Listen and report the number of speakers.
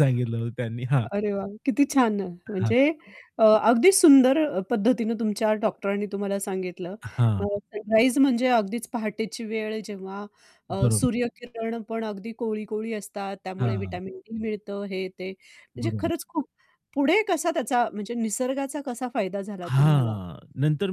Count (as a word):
two